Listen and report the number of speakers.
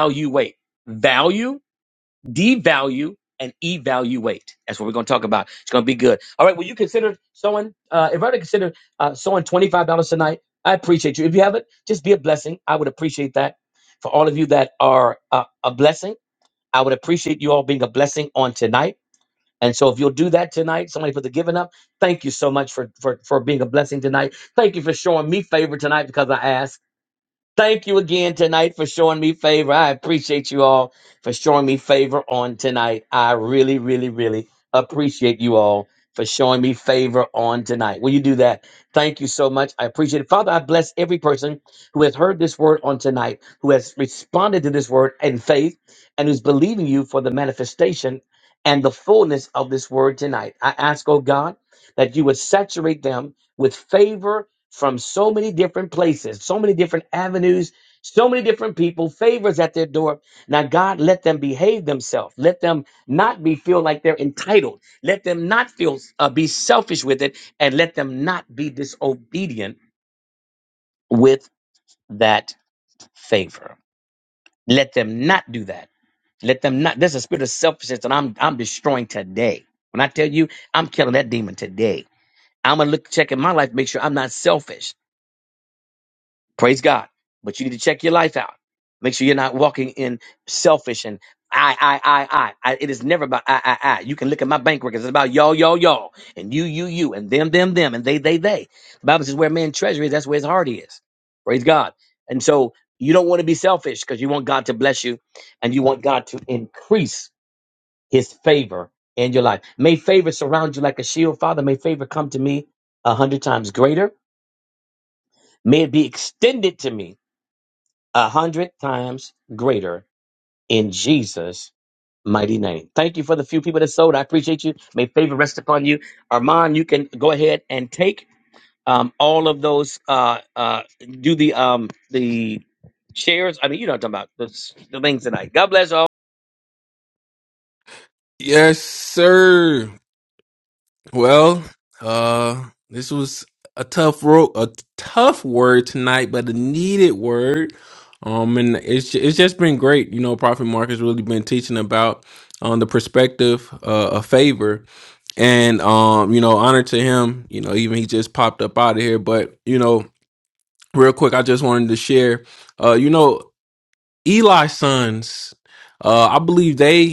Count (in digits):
2